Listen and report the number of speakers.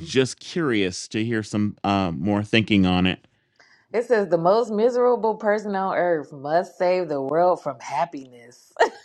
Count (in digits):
2